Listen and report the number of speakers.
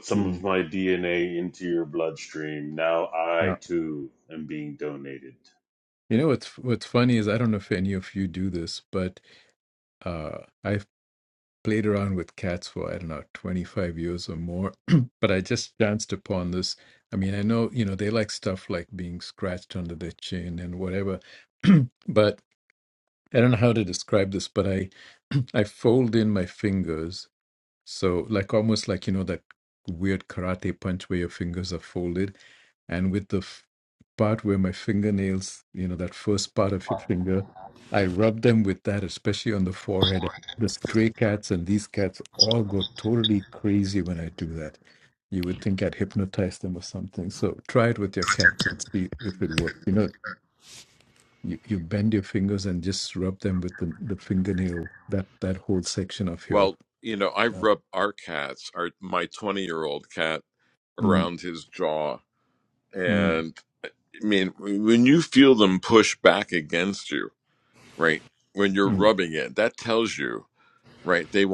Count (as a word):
three